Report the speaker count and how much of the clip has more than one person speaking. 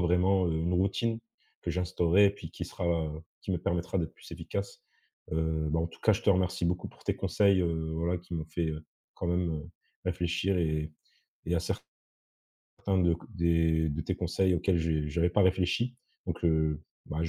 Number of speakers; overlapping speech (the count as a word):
one, no overlap